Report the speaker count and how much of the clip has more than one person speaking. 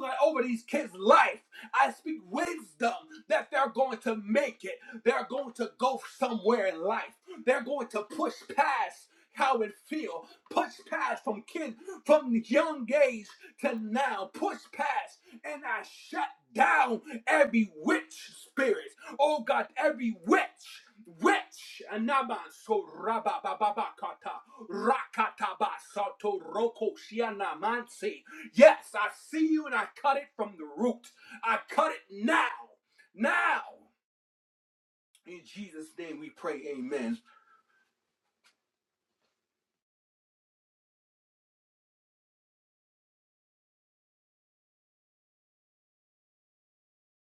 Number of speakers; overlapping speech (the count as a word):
one, no overlap